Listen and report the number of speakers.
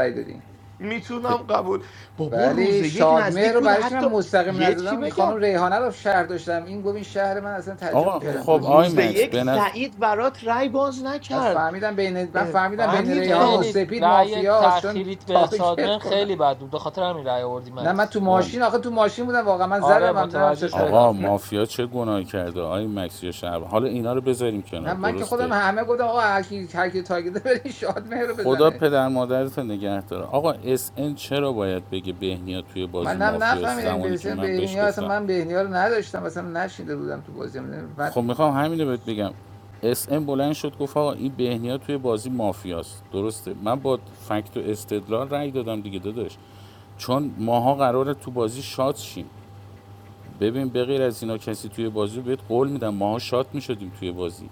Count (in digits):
4